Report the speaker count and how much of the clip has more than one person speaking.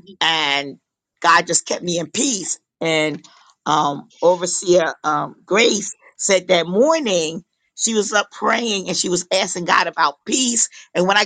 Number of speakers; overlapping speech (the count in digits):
1, no overlap